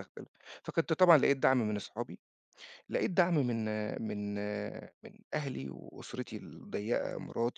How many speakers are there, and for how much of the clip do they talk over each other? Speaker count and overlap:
one, no overlap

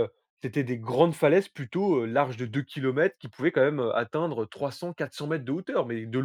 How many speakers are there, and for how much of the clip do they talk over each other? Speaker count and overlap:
one, no overlap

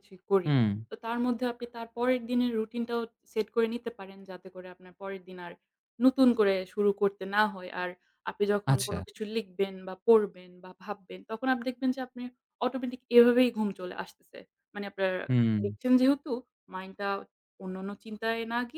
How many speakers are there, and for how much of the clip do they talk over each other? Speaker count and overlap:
two, about 3%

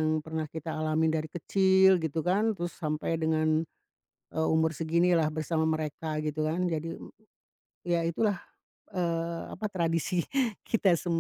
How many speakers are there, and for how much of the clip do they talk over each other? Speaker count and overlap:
one, no overlap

